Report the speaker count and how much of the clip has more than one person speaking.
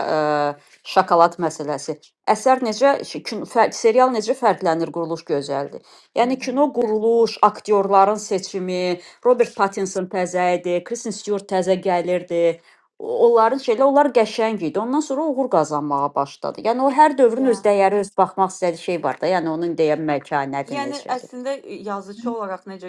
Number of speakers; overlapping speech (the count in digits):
2, about 5%